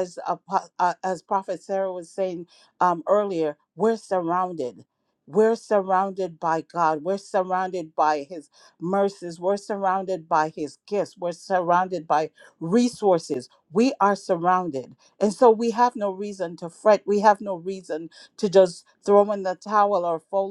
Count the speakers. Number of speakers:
one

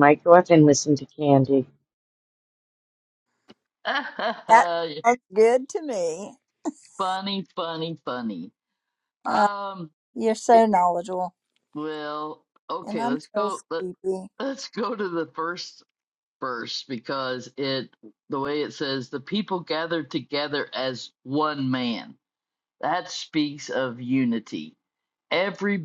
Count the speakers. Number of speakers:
three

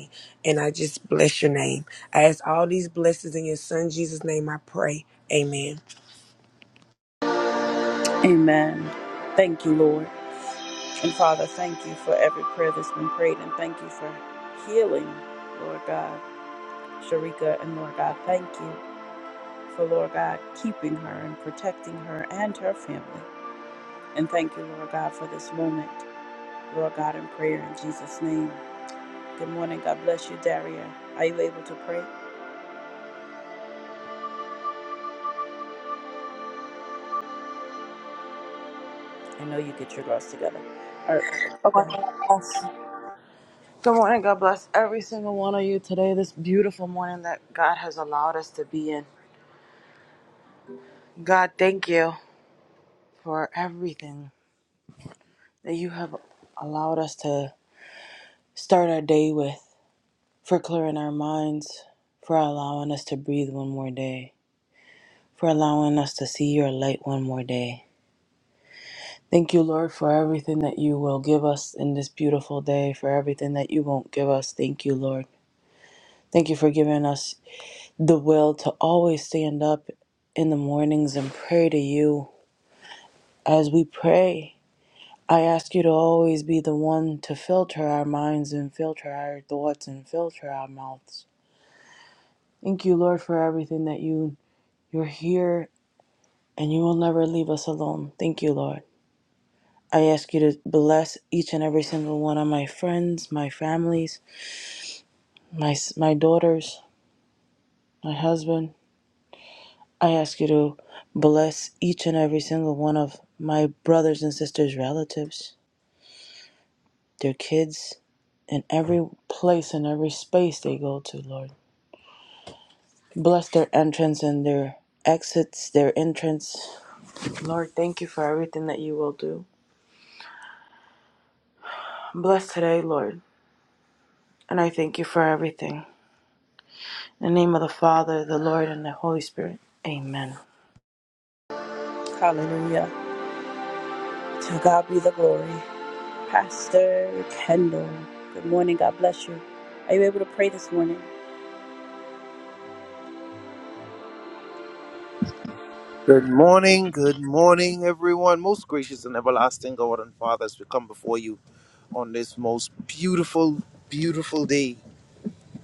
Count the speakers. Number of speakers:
four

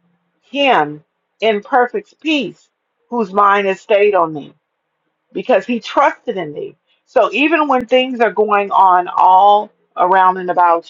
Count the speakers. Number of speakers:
one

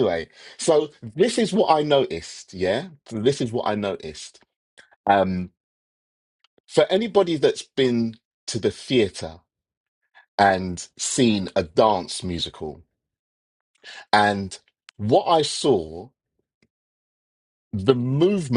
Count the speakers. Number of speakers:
one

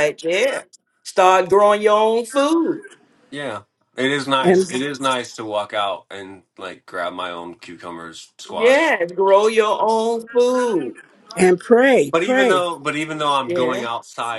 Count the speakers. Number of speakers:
three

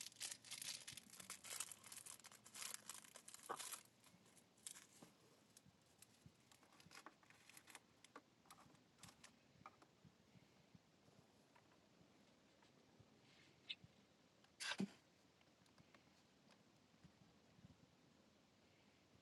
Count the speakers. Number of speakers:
zero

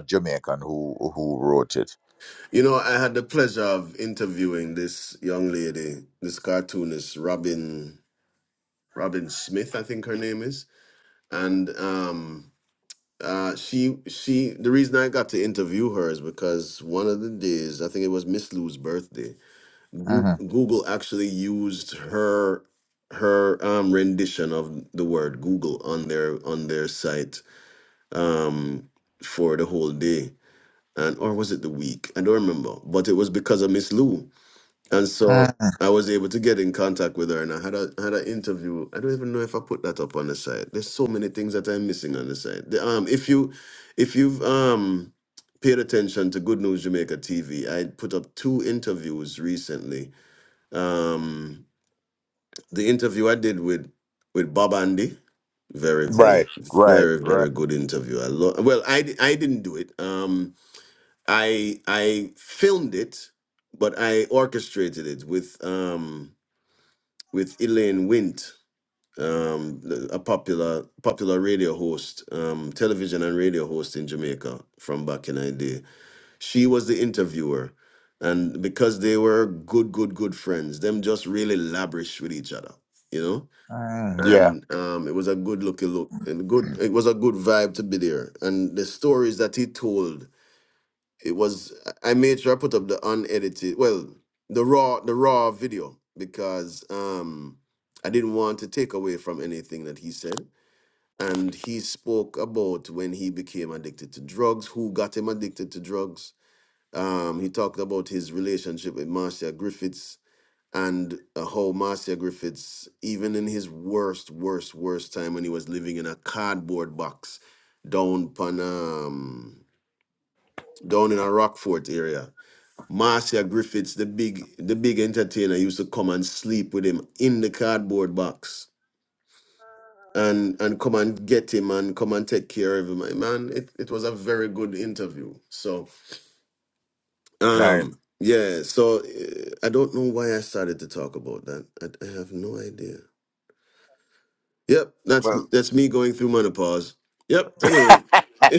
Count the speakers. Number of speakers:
two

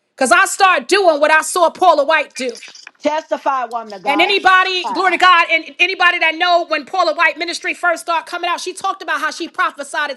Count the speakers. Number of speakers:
two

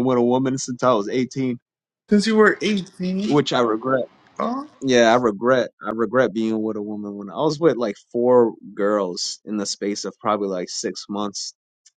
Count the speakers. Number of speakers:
two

